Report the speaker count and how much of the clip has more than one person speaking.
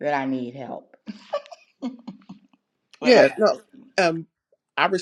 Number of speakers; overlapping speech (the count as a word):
two, about 10%